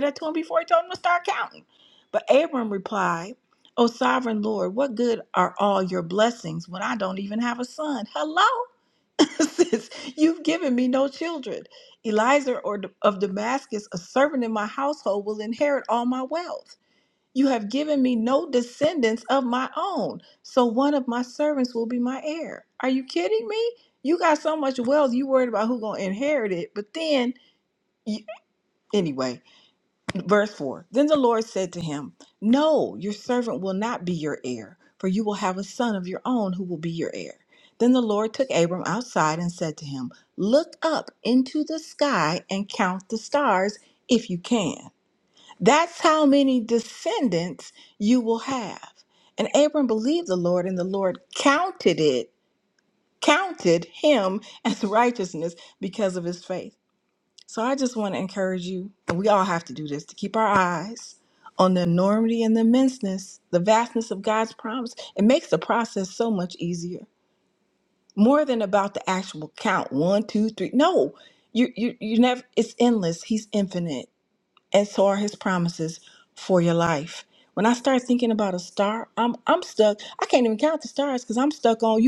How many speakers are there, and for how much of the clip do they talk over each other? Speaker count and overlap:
1, no overlap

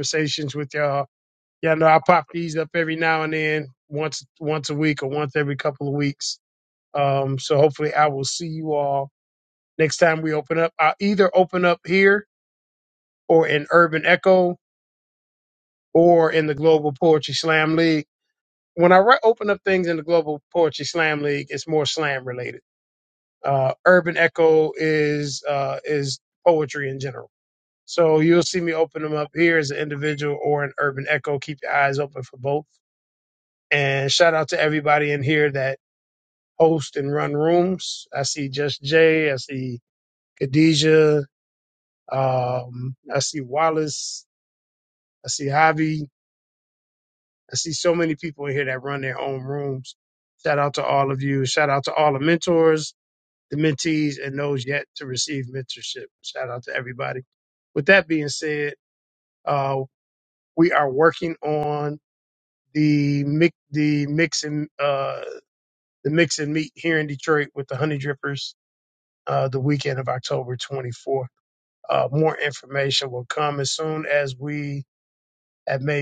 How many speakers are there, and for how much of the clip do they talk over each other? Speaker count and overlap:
1, no overlap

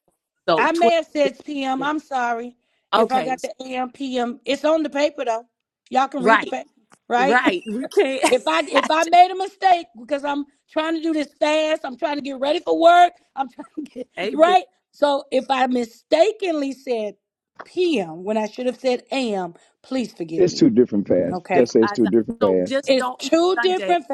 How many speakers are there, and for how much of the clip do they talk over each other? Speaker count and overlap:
3, about 18%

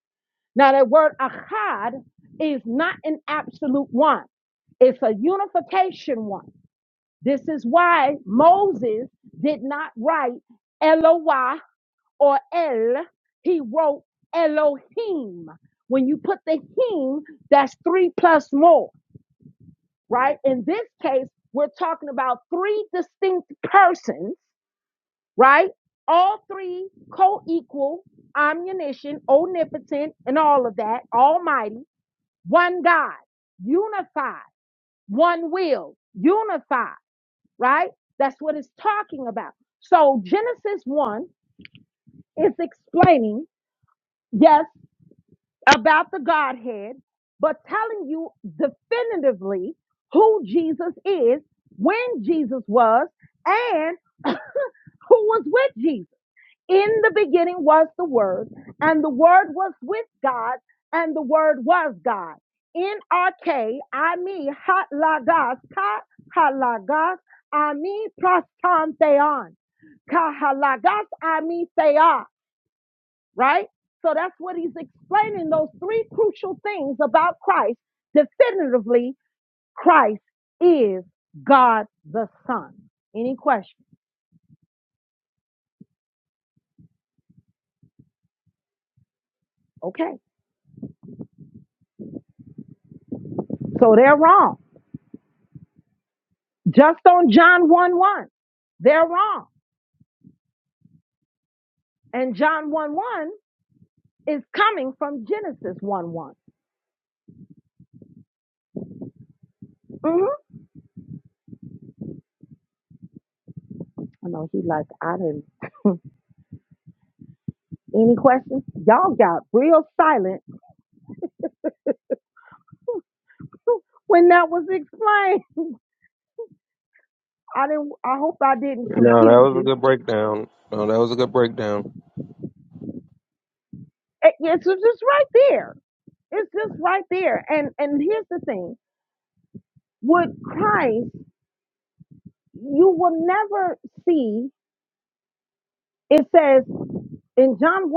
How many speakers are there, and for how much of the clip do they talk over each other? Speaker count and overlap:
2, about 1%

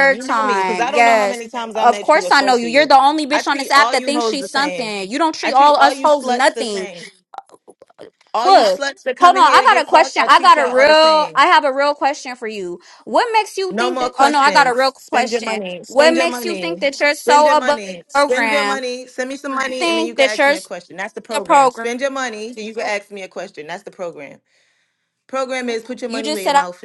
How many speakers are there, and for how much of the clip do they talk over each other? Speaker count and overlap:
2, about 53%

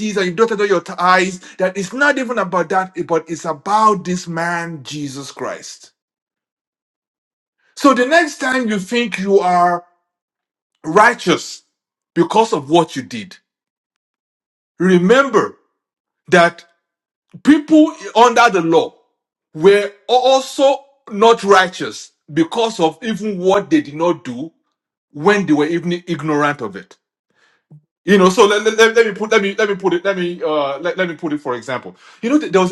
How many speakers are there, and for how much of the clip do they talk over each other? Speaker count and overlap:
1, no overlap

